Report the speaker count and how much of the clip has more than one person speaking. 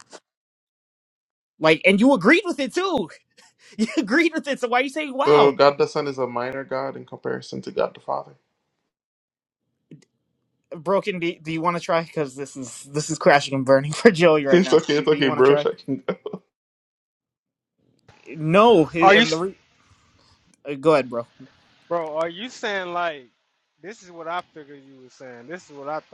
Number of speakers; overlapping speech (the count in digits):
3, about 7%